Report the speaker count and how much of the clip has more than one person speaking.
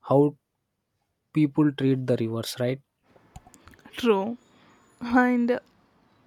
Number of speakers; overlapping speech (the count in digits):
2, no overlap